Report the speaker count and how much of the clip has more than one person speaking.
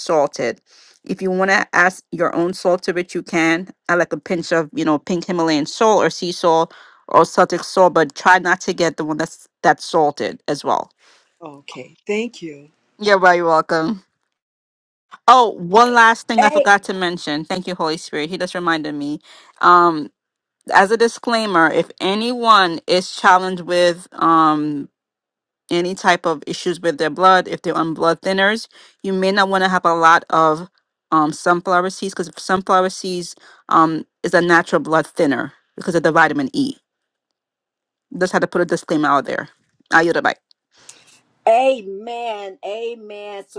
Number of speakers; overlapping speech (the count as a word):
three, about 1%